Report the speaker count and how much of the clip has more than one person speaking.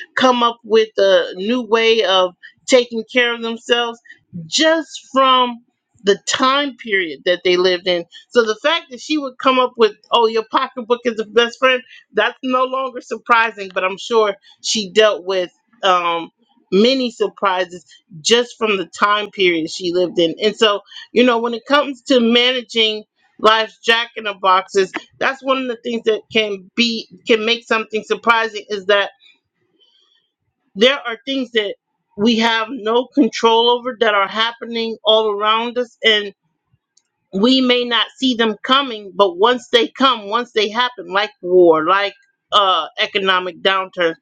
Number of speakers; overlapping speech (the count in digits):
1, no overlap